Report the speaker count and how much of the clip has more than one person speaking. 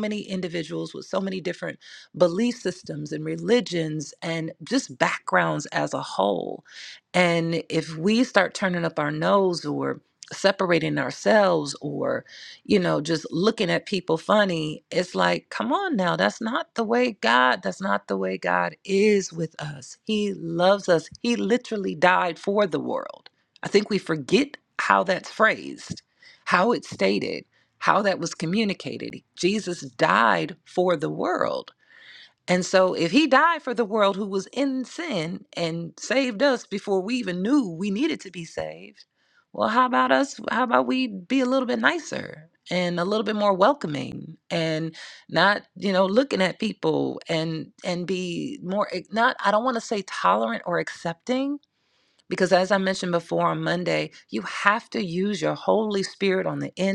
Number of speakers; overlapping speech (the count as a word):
one, no overlap